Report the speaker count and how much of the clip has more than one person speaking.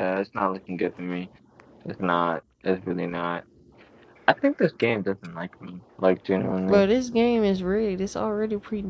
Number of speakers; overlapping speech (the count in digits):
2, about 2%